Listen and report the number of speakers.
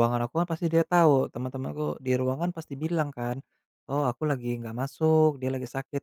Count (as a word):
one